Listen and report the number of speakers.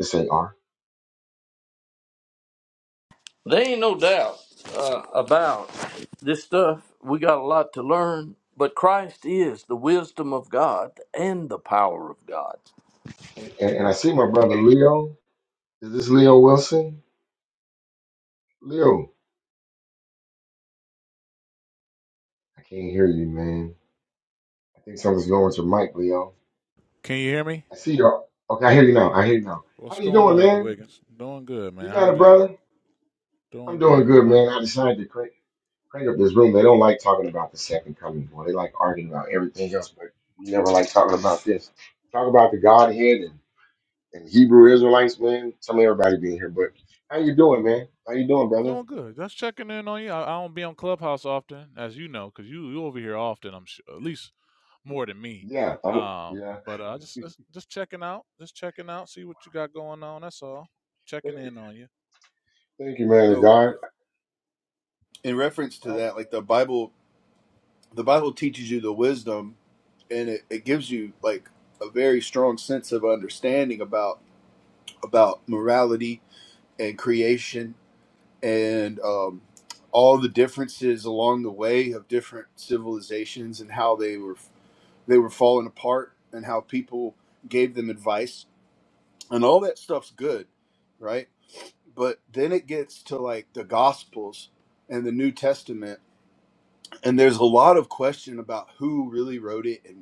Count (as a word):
four